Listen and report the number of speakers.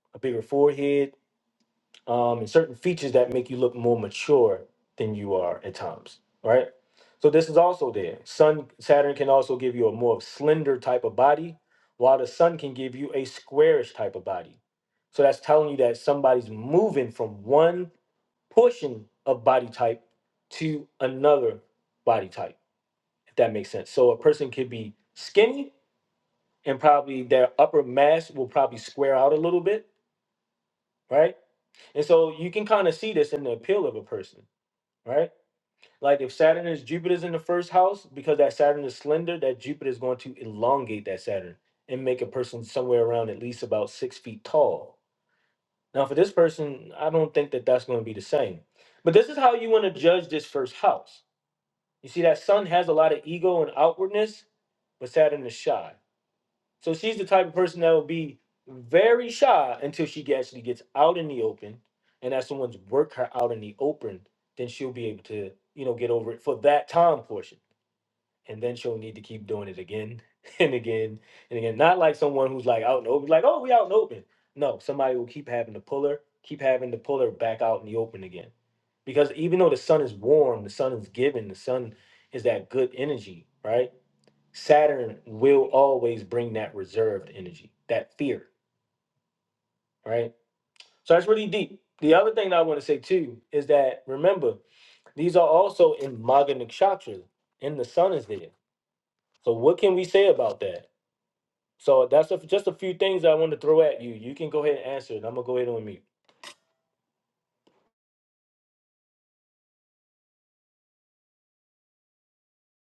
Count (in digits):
1